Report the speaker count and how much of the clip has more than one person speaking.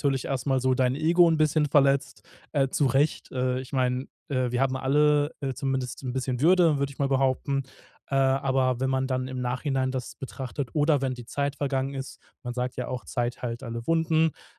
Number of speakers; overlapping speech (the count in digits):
1, no overlap